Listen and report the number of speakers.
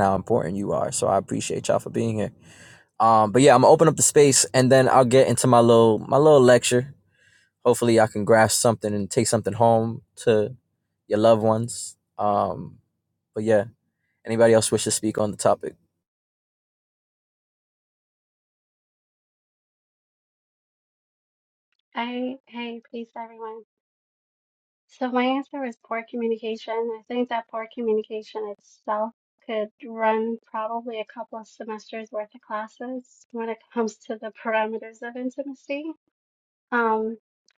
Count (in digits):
2